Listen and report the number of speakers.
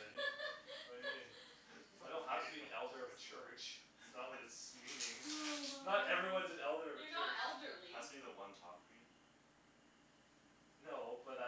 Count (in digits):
4